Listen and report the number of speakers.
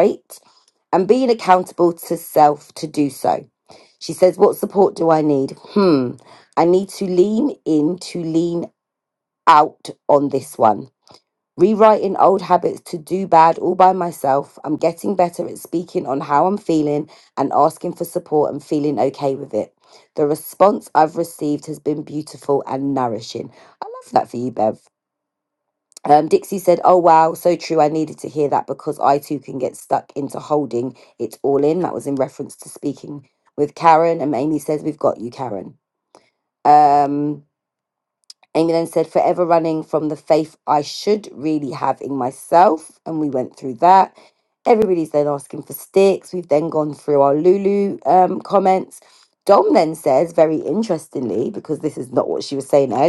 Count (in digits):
1